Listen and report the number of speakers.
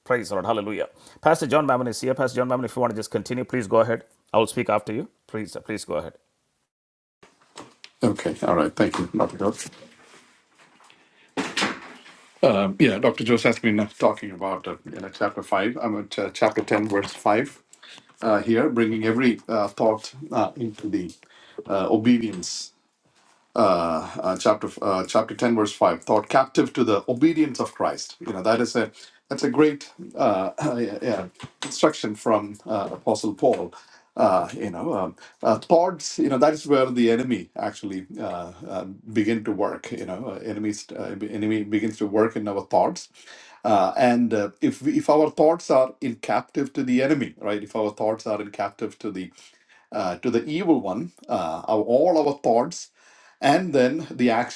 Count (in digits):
2